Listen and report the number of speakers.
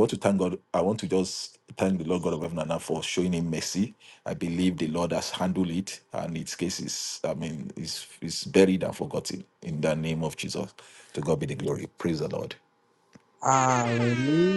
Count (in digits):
2